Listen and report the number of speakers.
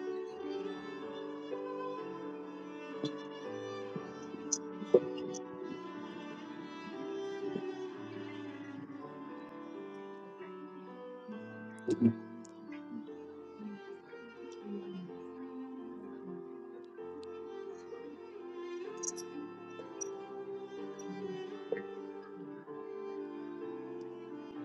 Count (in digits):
0